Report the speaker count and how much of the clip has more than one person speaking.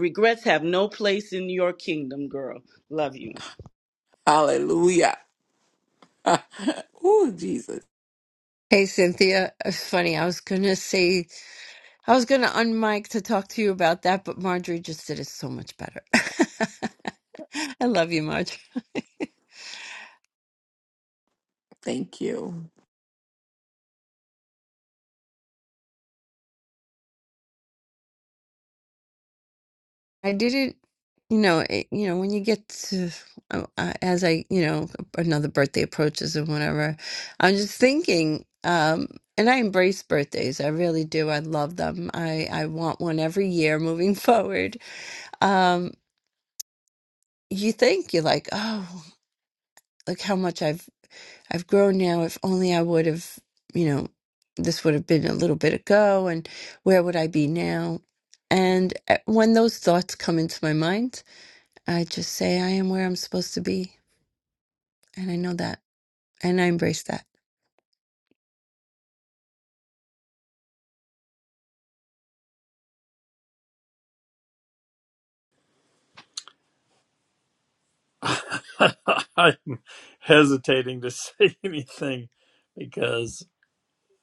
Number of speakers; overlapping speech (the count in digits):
4, no overlap